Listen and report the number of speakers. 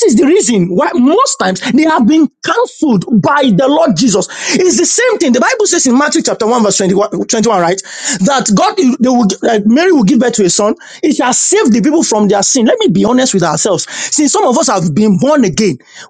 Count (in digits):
1